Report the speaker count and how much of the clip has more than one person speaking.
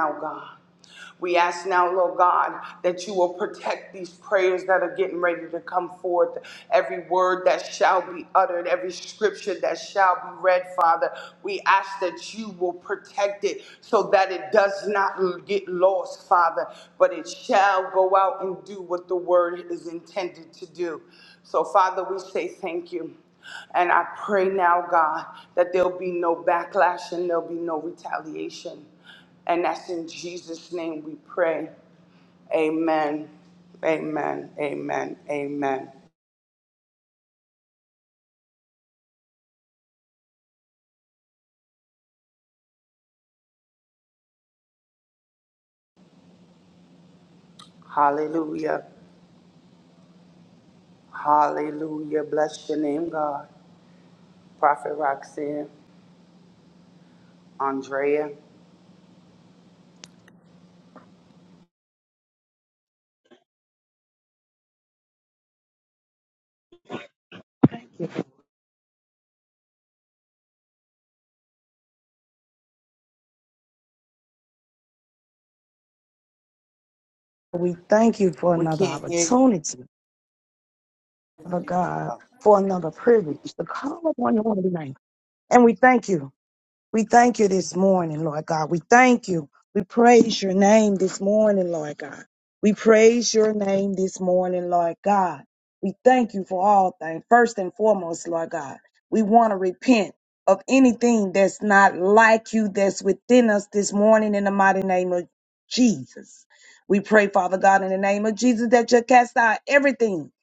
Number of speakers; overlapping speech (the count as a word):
two, about 1%